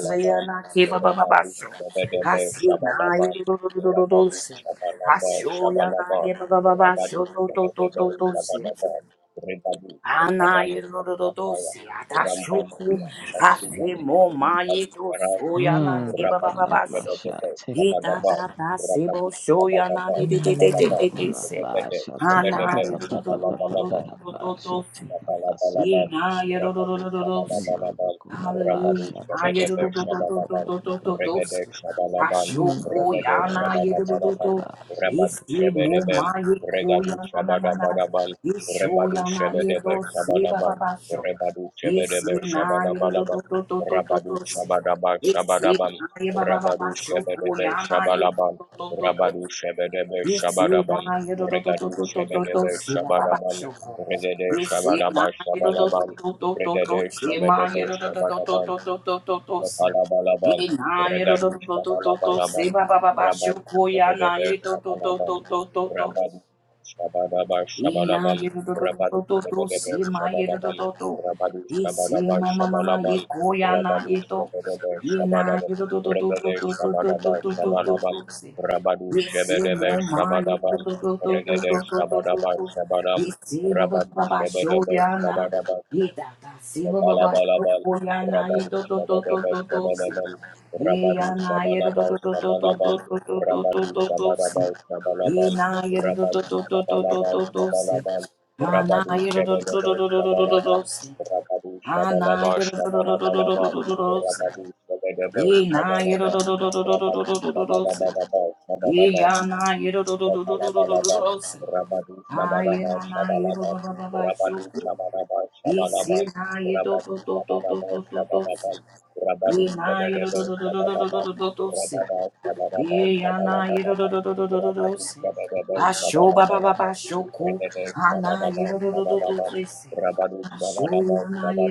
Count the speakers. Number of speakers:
3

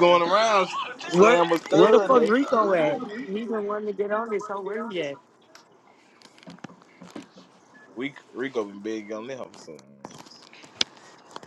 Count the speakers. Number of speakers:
2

